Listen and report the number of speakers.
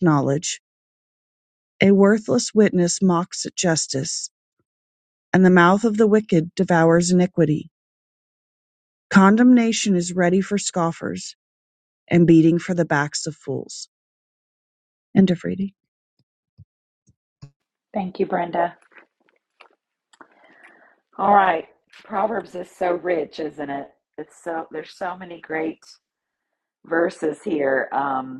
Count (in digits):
2